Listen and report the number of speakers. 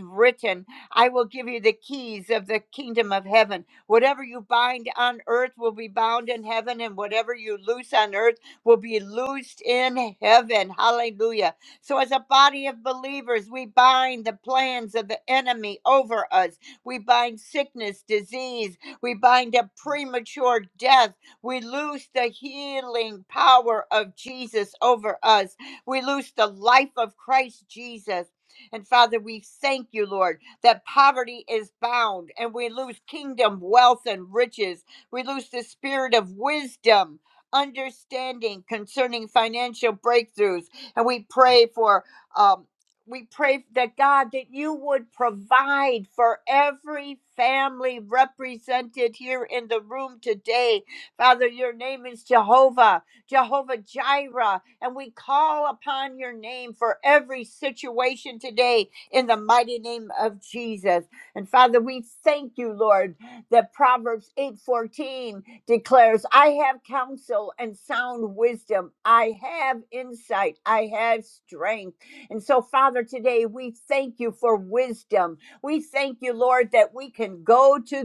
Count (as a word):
one